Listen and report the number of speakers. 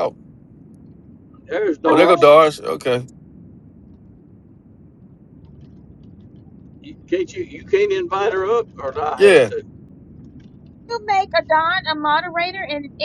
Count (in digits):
3